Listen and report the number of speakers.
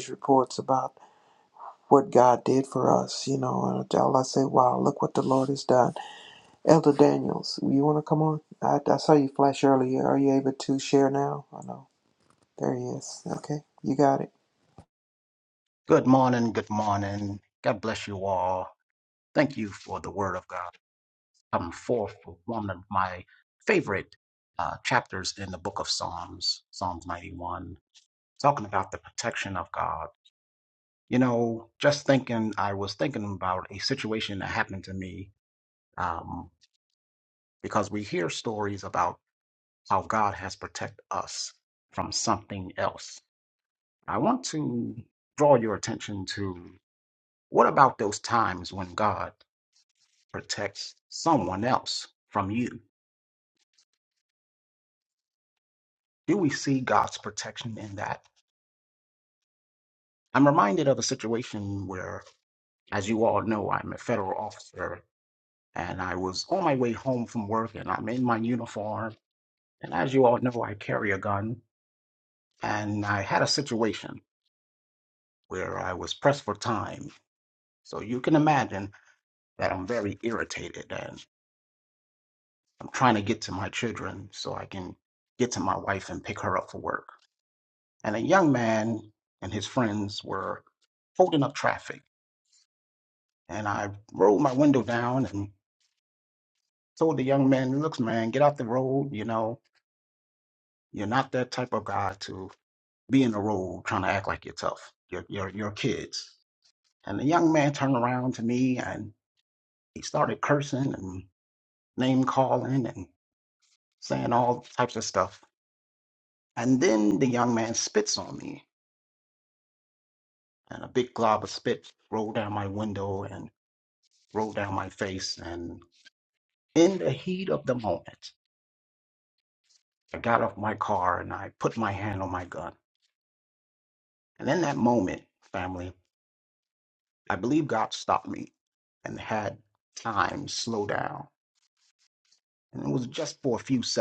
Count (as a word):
two